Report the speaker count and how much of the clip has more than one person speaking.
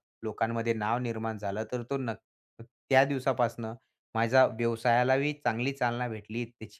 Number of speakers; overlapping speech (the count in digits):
1, no overlap